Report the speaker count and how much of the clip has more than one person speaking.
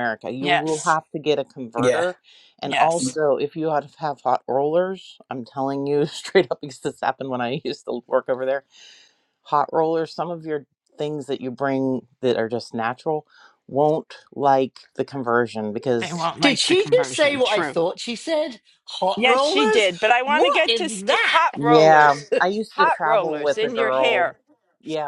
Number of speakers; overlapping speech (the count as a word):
three, about 26%